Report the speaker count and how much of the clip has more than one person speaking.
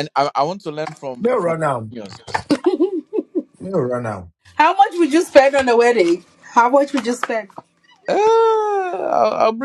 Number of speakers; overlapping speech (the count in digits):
3, about 3%